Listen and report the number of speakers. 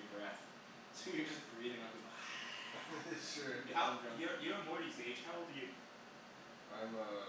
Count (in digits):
3